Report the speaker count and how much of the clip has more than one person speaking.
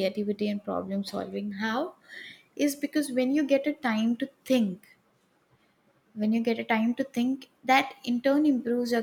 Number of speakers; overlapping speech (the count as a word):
one, no overlap